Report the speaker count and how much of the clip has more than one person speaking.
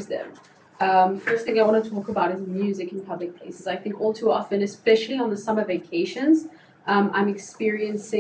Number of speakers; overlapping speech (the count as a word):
one, no overlap